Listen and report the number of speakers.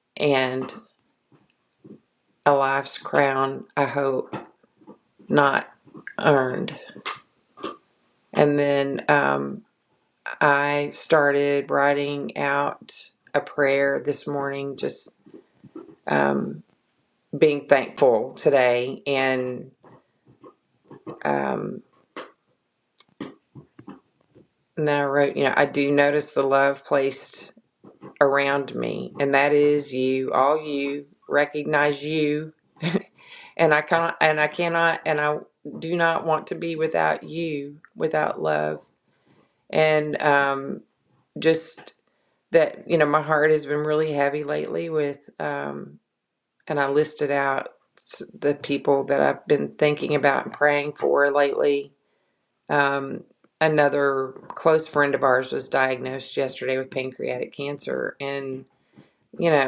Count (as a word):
one